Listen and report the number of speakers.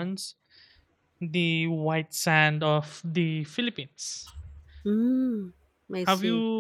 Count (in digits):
2